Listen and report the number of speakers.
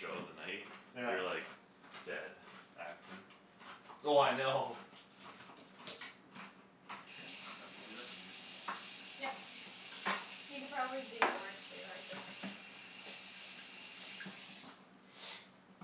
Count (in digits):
3